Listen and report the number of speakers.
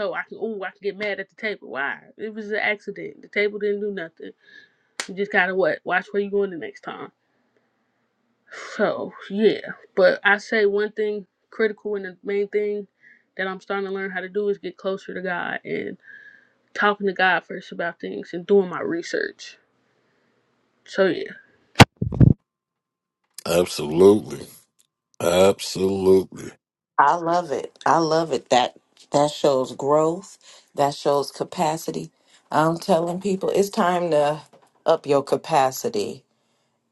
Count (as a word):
three